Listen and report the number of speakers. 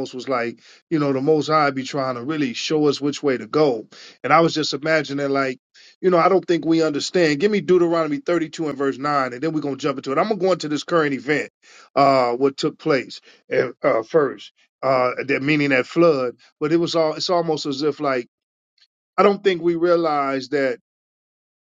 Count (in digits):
1